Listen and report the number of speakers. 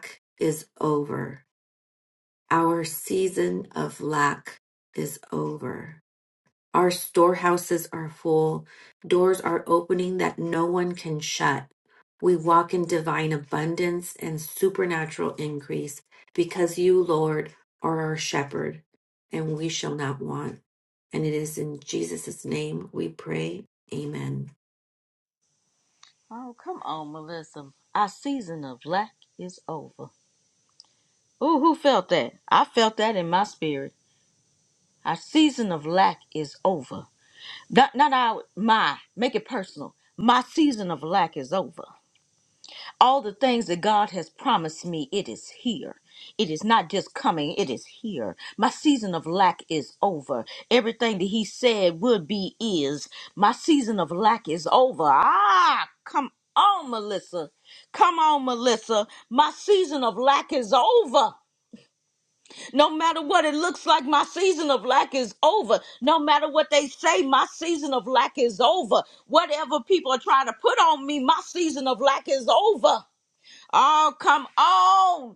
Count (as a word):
two